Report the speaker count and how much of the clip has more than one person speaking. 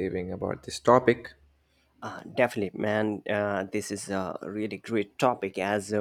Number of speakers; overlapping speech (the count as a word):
two, no overlap